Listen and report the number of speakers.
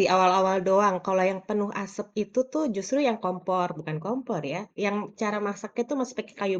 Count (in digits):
1